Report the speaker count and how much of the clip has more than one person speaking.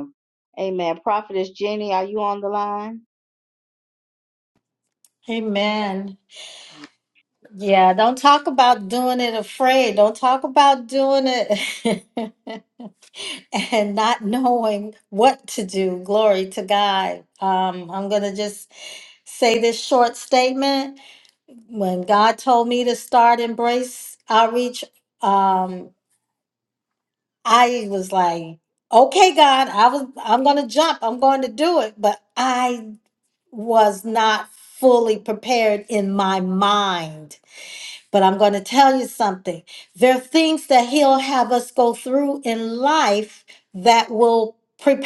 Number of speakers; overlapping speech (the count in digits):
2, no overlap